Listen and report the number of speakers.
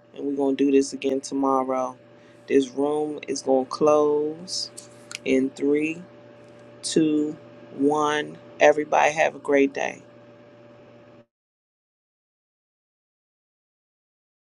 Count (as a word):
one